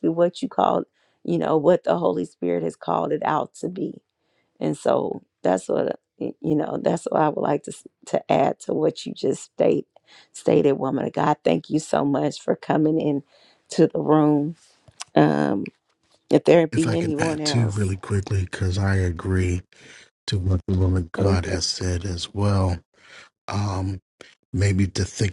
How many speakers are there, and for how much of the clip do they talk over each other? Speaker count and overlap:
two, about 6%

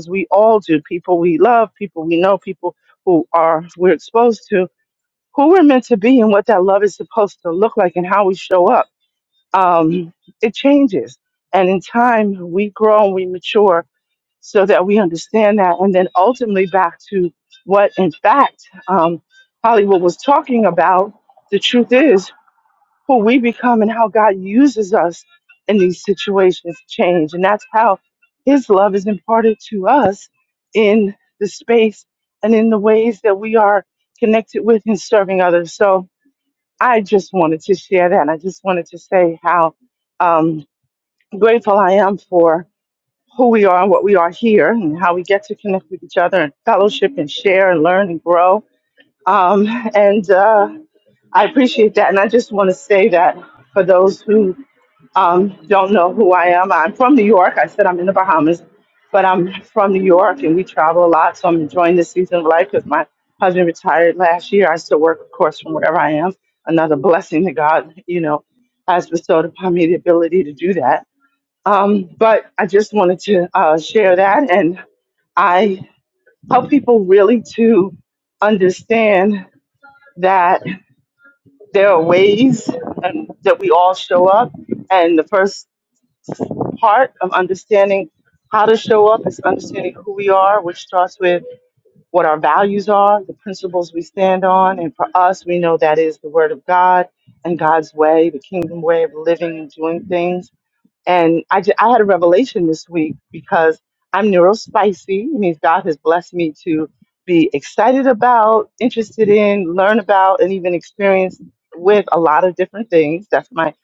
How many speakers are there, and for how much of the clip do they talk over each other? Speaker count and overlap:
one, no overlap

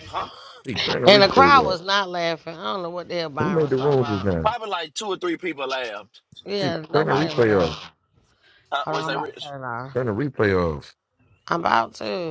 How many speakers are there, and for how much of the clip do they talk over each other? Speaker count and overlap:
three, about 28%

